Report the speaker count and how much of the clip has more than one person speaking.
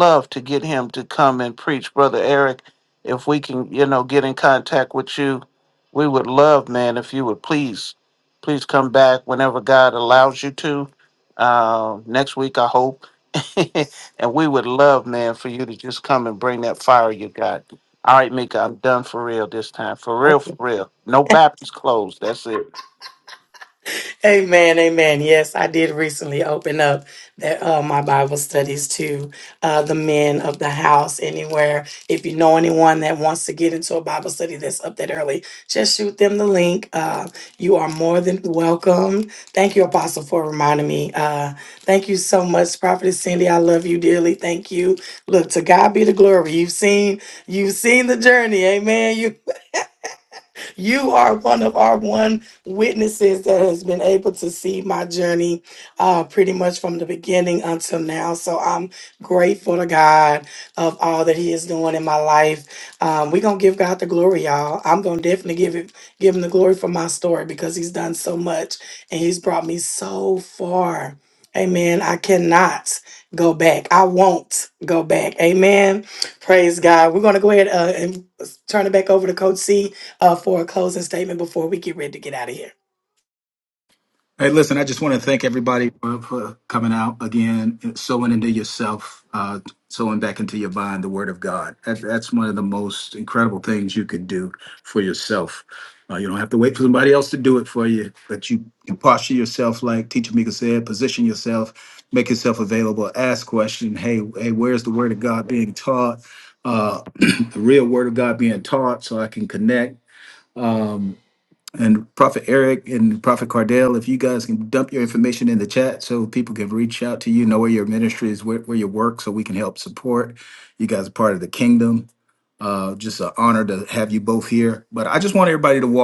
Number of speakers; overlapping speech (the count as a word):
three, no overlap